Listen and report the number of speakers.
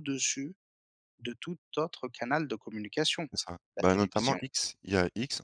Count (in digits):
2